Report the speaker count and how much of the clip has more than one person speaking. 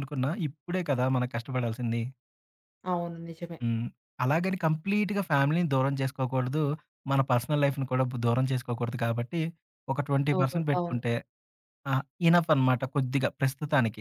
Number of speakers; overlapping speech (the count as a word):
two, about 5%